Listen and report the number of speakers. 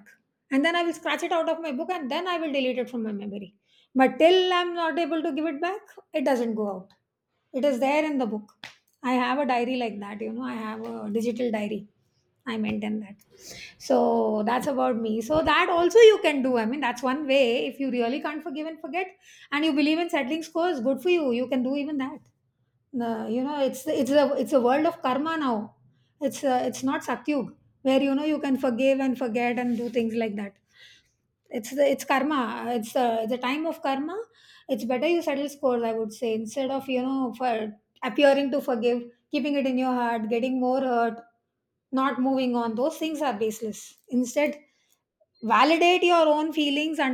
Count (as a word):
one